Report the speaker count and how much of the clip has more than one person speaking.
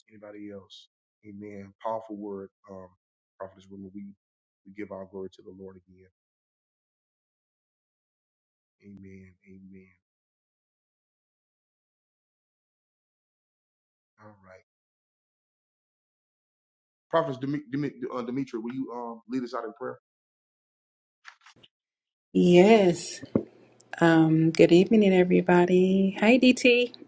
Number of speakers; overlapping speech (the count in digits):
2, no overlap